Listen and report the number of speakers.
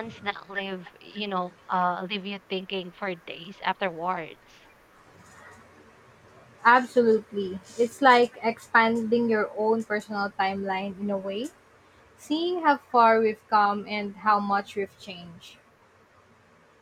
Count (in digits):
2